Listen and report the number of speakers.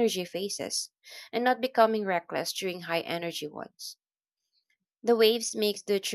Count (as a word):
one